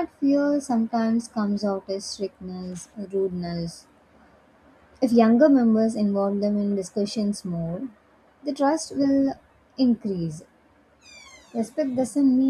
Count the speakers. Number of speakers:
1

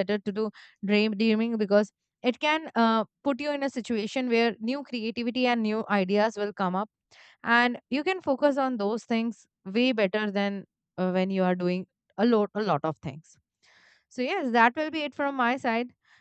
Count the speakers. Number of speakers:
1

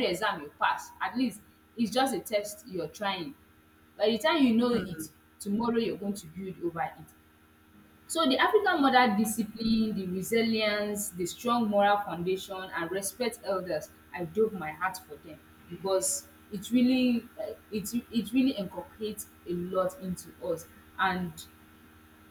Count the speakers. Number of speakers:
1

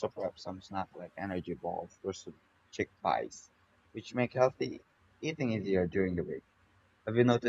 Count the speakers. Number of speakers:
1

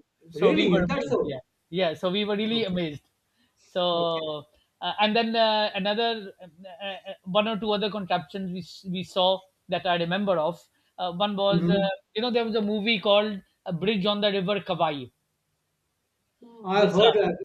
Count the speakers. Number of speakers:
2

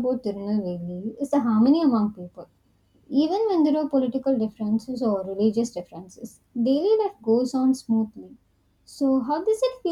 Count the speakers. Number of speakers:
1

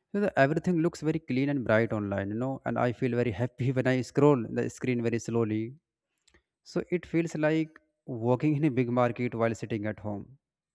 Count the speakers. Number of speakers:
1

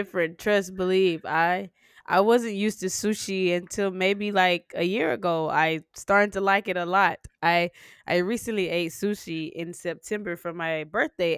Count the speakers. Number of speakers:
1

